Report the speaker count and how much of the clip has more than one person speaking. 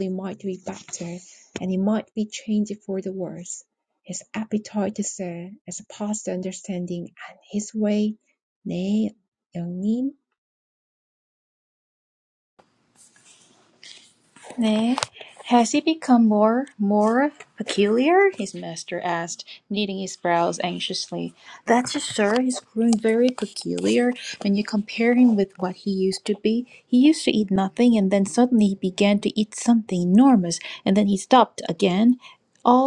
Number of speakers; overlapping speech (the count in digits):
2, no overlap